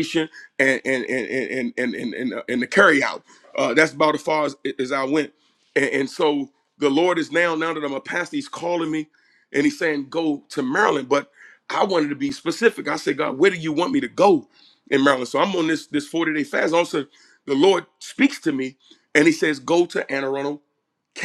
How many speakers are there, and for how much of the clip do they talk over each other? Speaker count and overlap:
one, no overlap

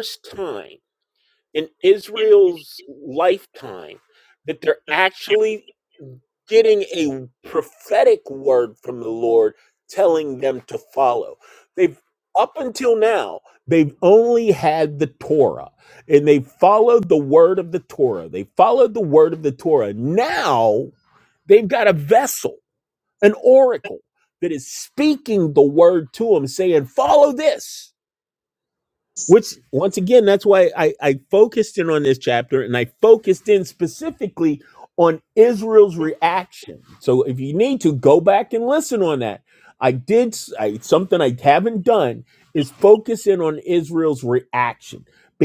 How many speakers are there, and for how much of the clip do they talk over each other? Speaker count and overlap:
one, no overlap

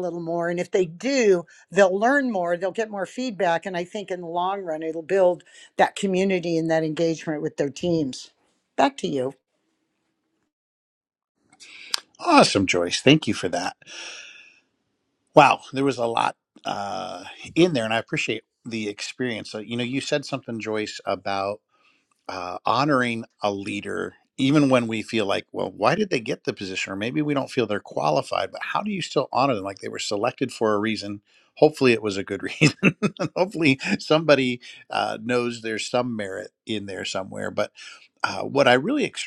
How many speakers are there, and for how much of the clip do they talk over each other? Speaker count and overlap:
two, no overlap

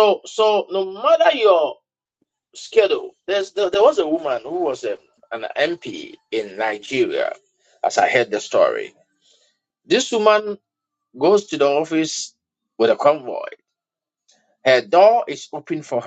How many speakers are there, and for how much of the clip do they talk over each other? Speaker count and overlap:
one, no overlap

